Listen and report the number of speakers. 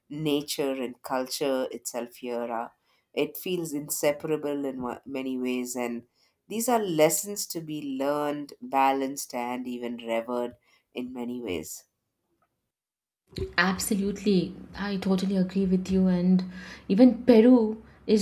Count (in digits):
2